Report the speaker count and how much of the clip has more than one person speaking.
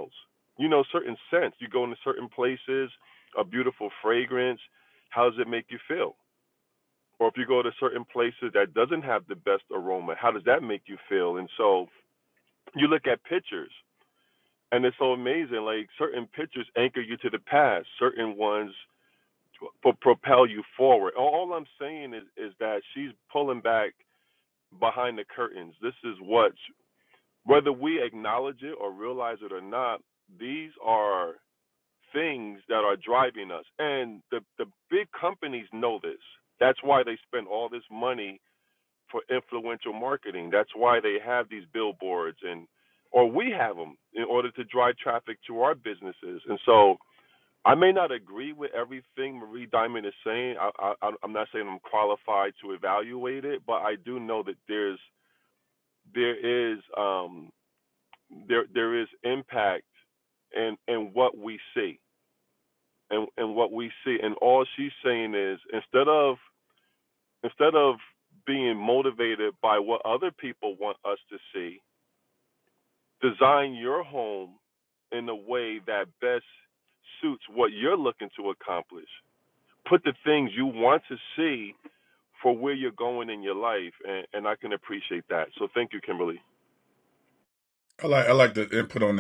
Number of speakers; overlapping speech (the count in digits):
2, no overlap